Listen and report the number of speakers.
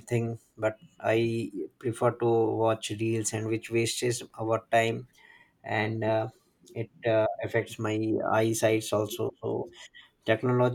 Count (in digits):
1